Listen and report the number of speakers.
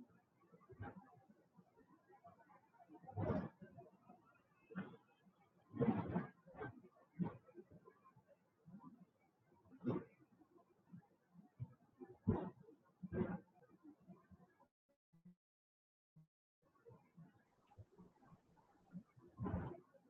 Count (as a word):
zero